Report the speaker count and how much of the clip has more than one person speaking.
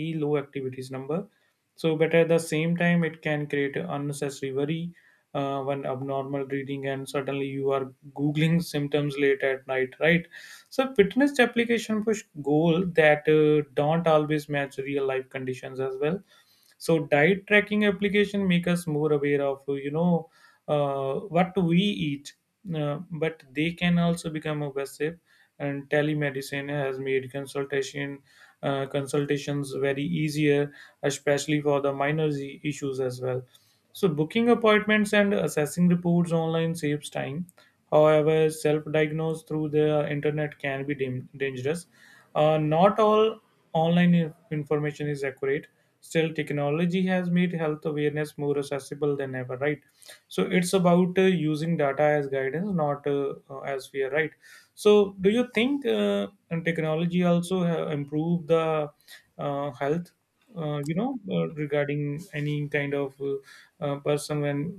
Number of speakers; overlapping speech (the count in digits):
1, no overlap